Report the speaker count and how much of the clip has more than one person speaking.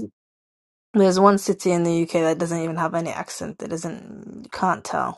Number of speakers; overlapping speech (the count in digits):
1, no overlap